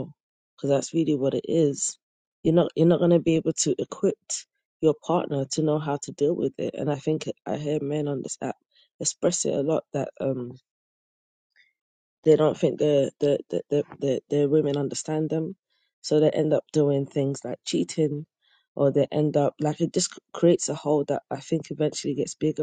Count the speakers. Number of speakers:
1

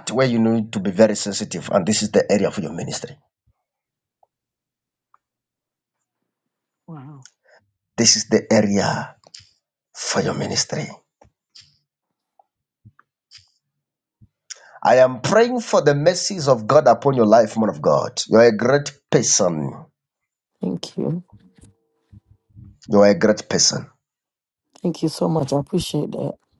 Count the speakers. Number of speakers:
2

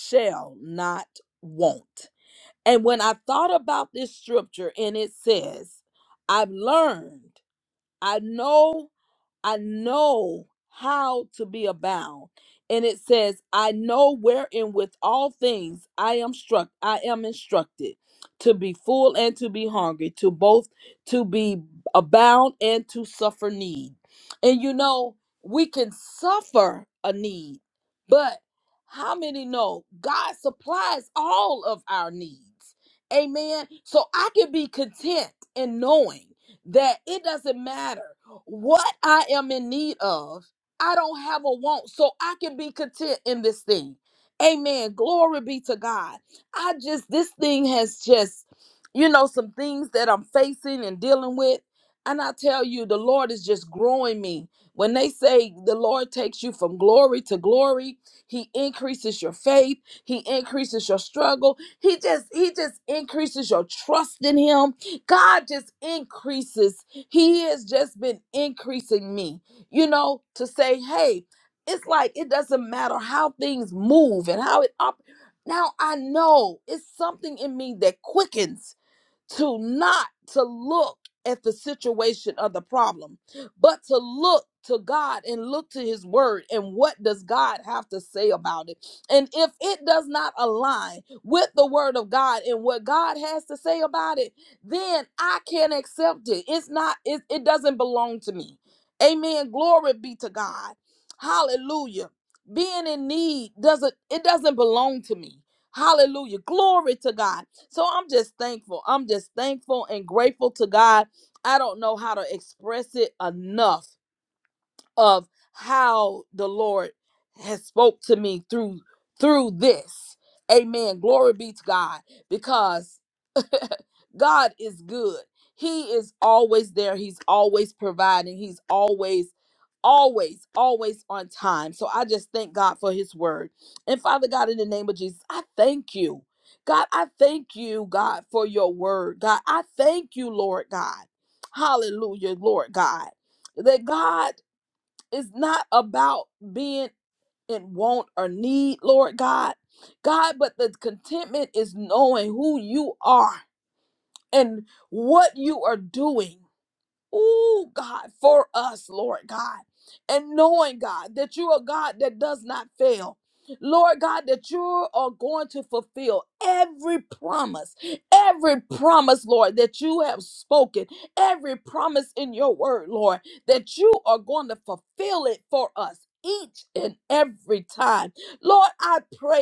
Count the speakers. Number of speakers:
1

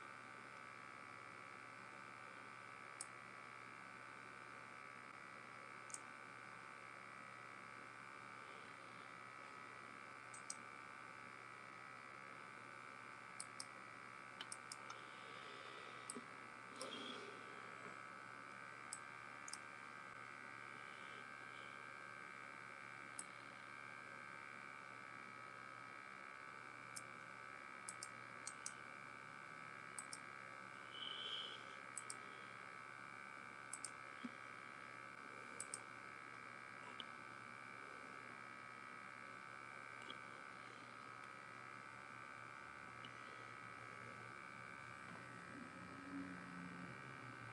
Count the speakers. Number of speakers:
0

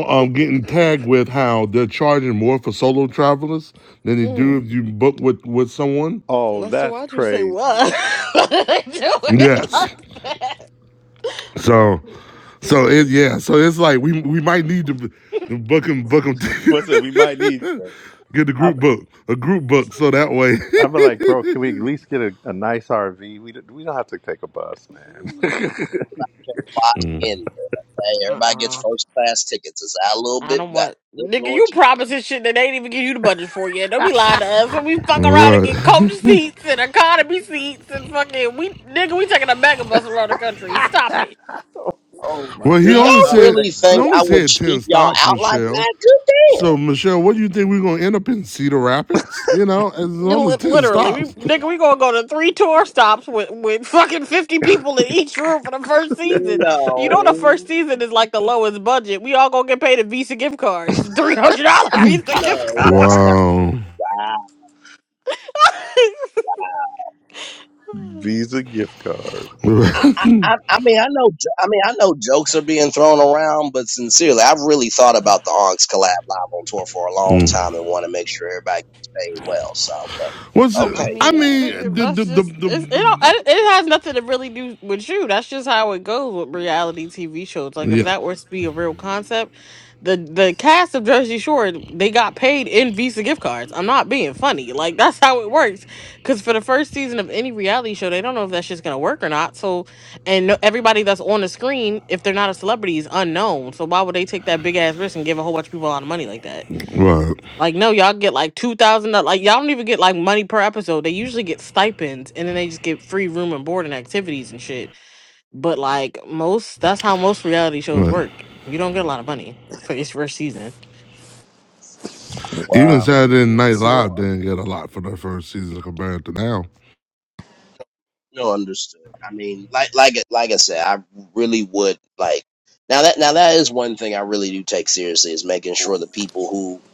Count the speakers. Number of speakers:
4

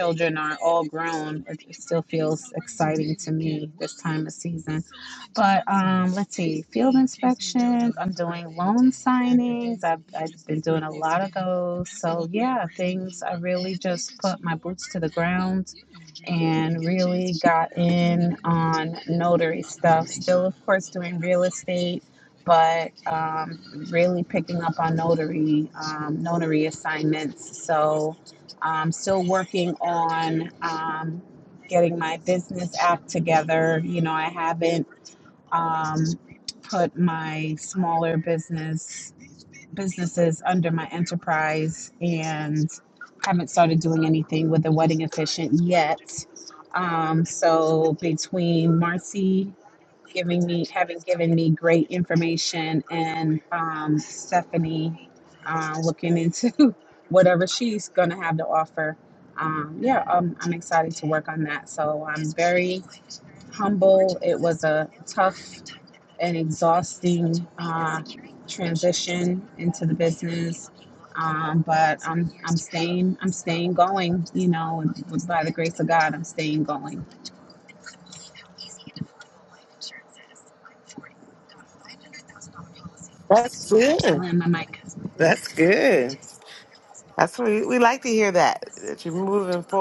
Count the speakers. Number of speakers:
2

